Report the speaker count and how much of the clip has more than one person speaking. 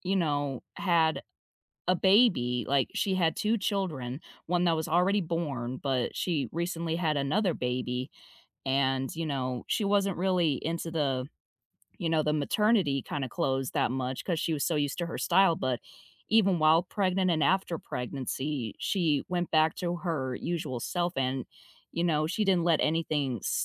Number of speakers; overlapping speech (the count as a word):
one, no overlap